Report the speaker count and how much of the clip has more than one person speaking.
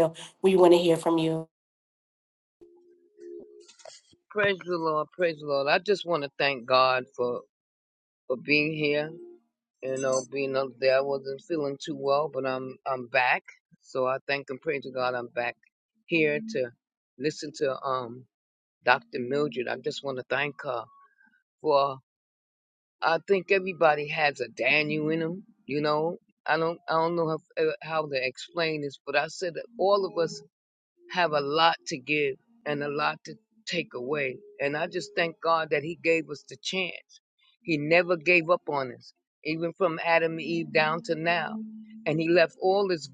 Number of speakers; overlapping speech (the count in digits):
2, no overlap